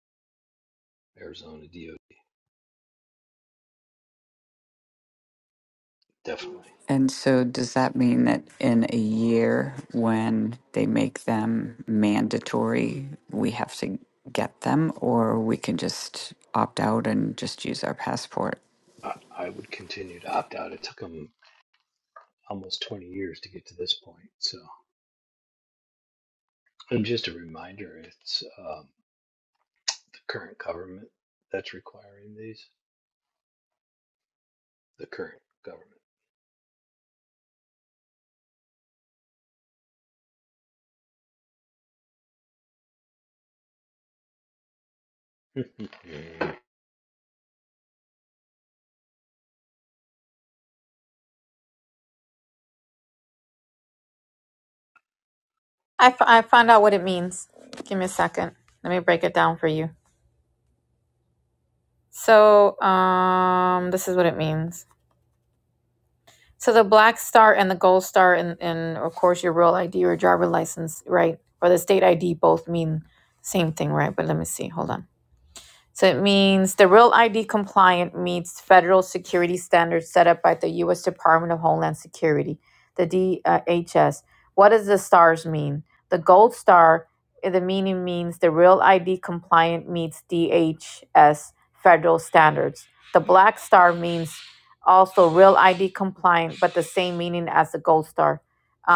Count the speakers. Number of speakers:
3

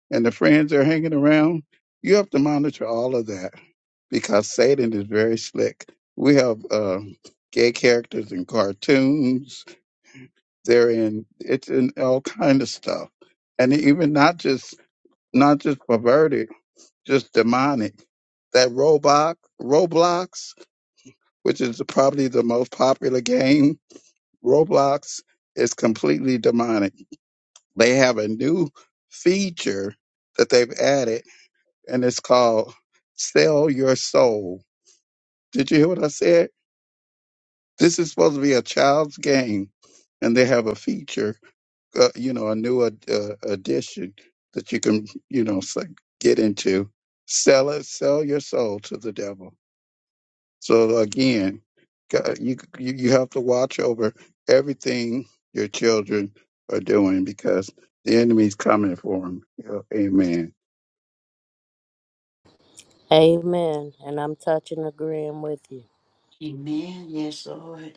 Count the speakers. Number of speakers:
3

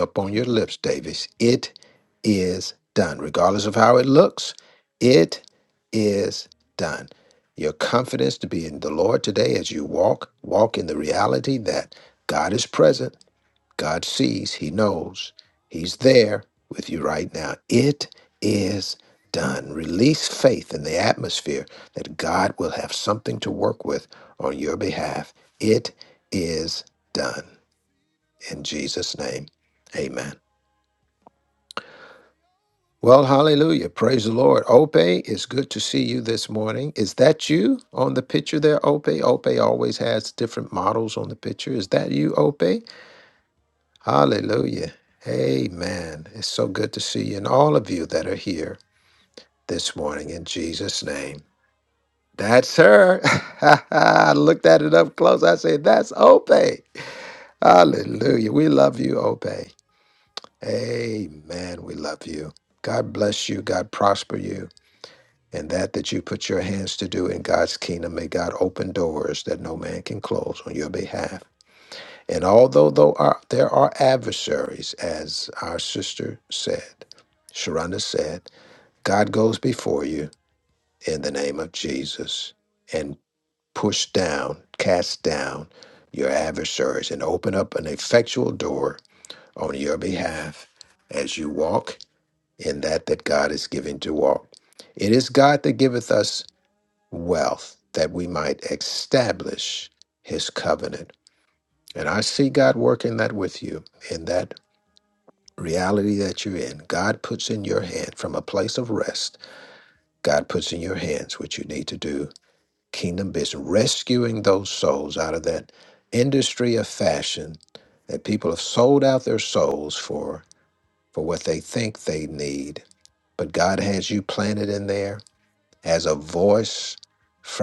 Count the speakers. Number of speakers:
1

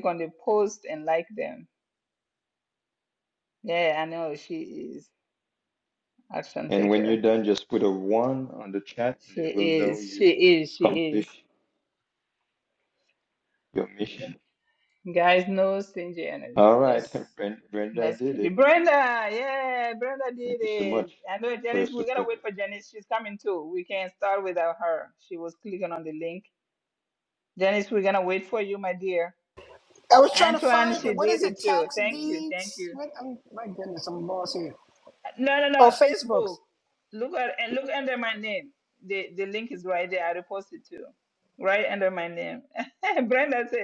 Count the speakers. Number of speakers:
3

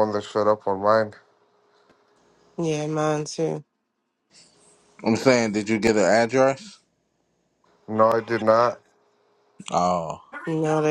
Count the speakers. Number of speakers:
3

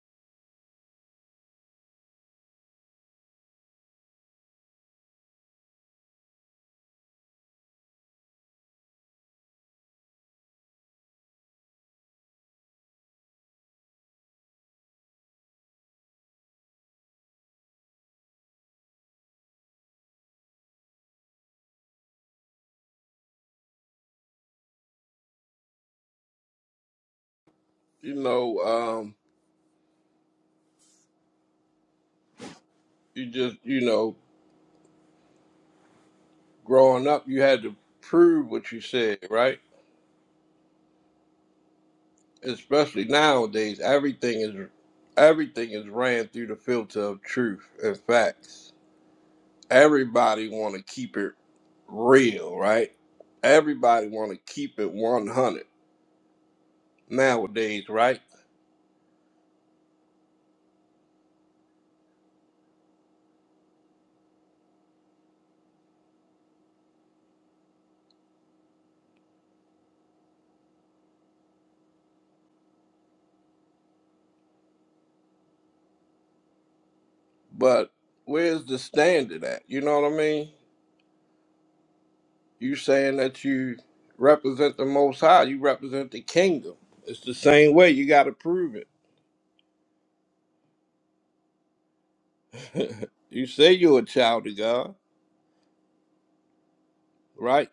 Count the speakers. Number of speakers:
1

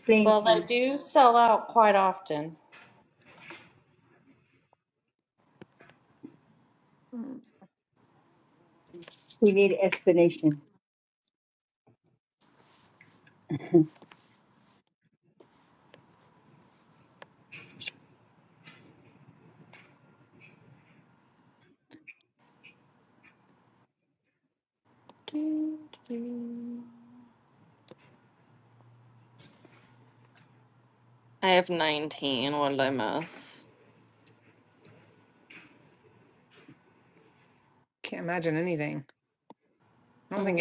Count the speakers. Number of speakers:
4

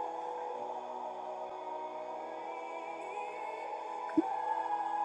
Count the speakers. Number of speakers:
0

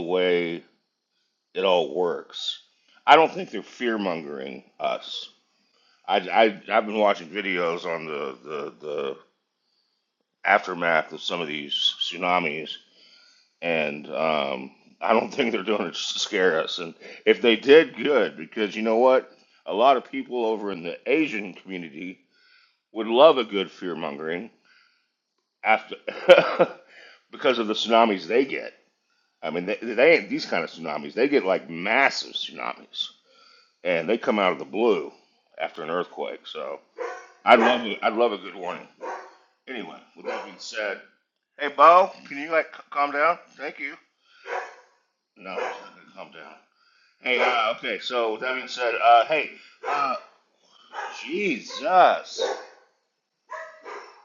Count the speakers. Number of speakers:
1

